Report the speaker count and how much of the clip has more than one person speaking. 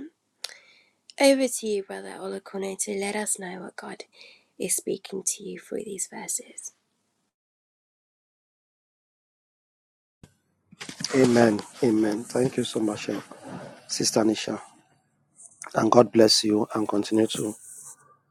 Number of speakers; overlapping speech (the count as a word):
two, no overlap